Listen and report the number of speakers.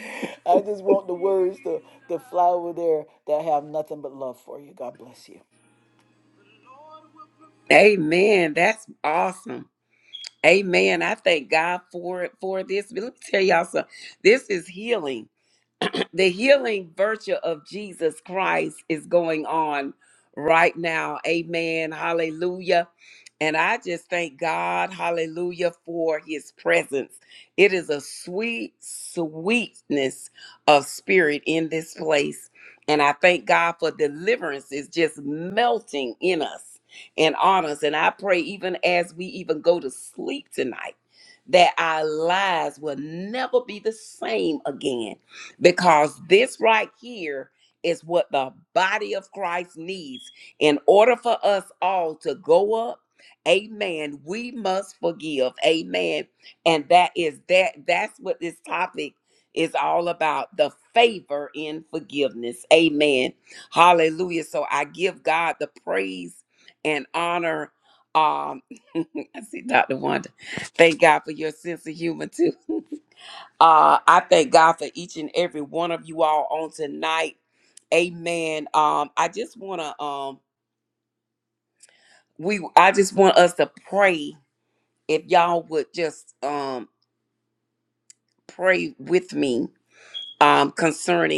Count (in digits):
2